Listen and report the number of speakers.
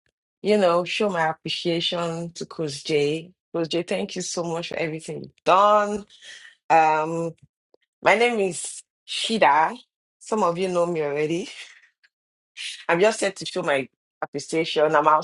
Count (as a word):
one